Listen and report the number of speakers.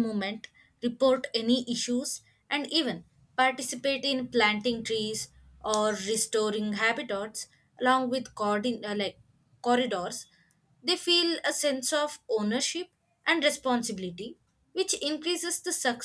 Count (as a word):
one